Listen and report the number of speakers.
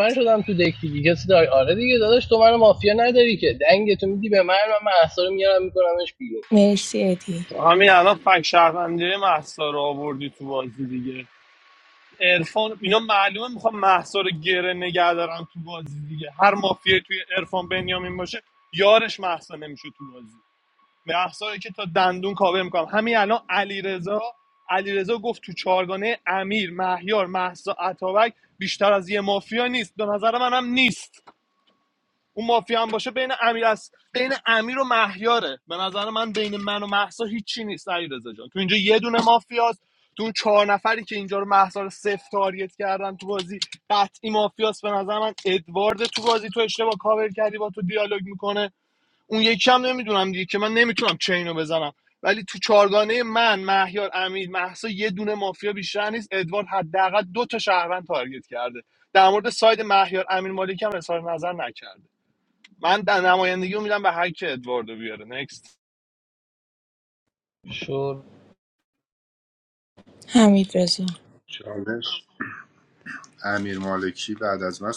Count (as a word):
four